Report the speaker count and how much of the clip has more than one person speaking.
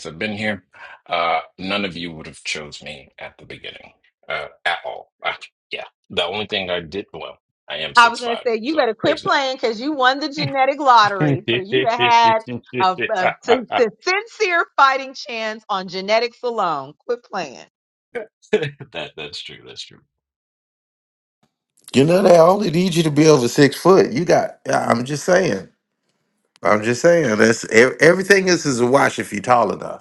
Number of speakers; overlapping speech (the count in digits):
3, about 5%